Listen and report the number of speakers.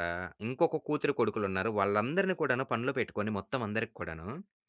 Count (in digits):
1